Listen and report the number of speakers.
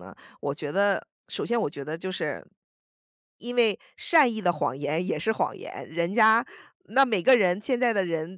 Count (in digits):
1